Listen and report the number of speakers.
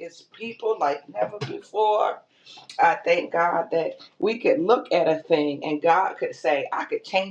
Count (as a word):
one